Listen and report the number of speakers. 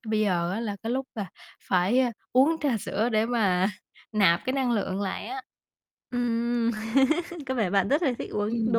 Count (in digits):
2